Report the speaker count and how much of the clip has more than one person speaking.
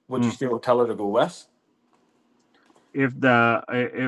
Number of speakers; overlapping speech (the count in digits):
2, about 5%